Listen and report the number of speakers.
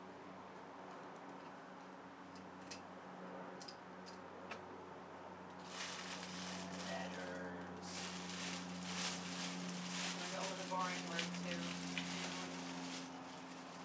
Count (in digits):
2